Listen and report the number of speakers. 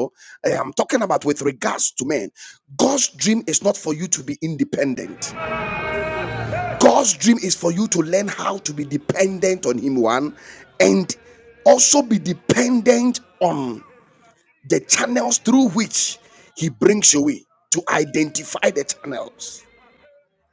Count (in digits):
1